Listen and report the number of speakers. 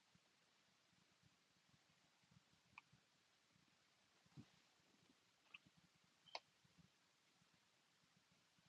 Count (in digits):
0